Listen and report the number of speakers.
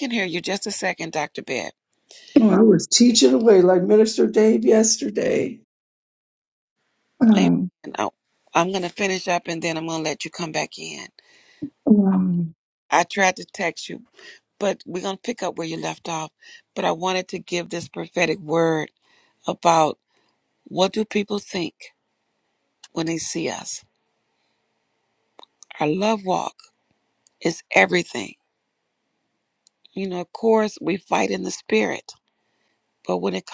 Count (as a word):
two